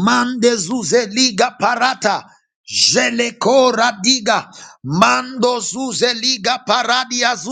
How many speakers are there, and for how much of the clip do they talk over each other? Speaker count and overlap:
one, no overlap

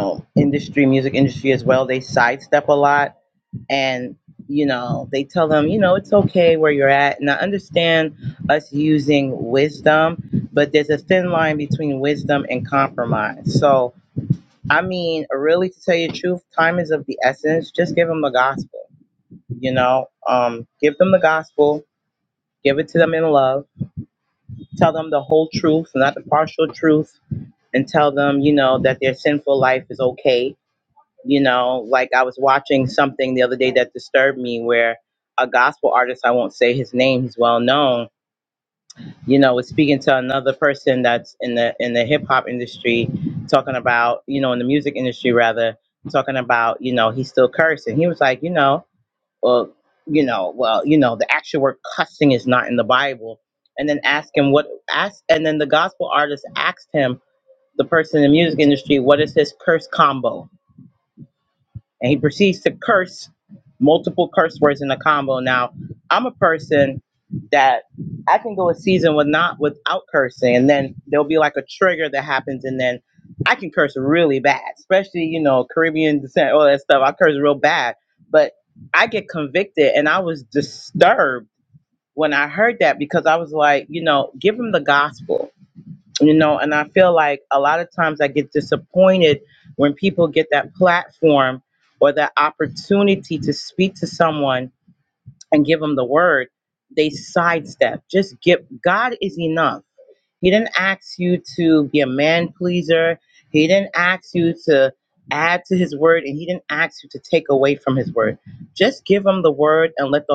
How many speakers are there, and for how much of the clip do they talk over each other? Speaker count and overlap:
one, no overlap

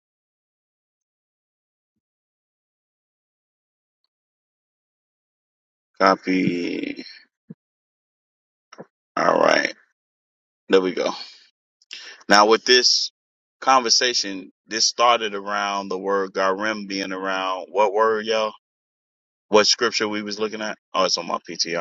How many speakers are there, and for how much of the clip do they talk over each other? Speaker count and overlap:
one, no overlap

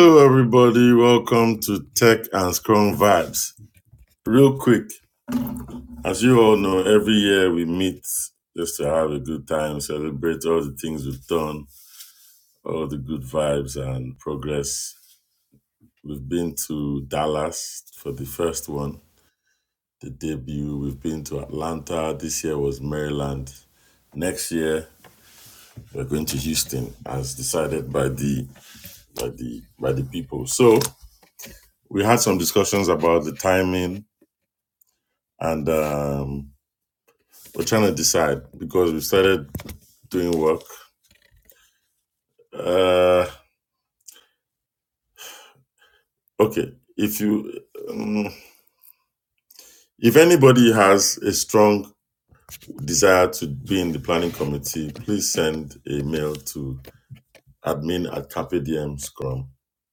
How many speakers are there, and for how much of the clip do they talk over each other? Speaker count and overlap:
one, no overlap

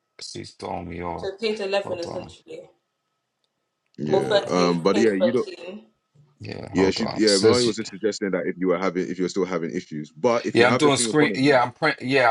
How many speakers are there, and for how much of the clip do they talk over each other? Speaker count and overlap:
three, about 32%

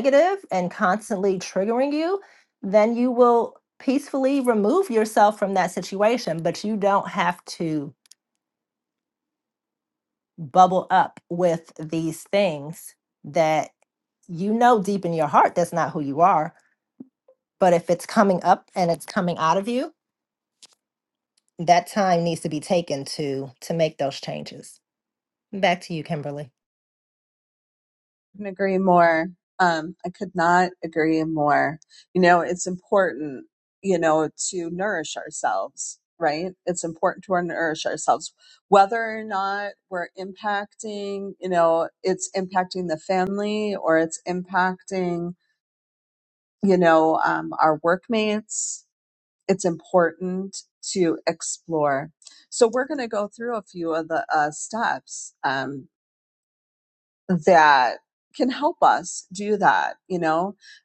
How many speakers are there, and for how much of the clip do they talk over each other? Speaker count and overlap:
two, no overlap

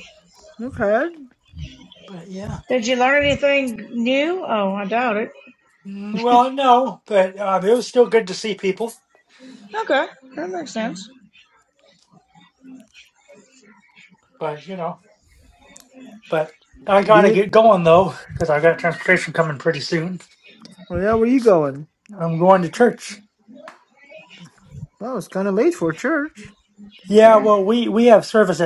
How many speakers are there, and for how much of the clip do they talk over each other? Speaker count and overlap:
three, about 2%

